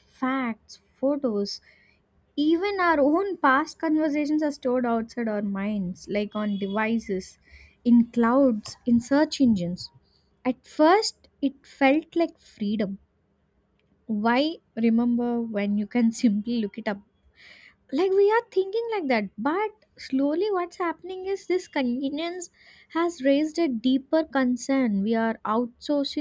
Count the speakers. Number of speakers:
1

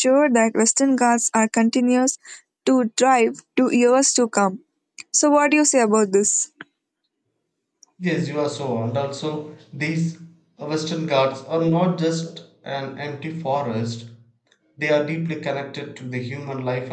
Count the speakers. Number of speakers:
2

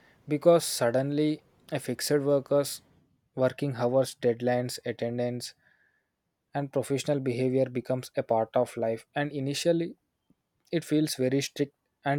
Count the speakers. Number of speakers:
1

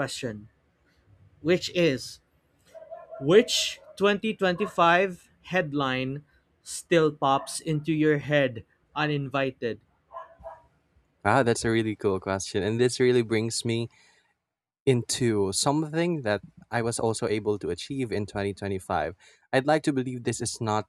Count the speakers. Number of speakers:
2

